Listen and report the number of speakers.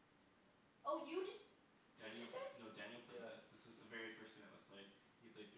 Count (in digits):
2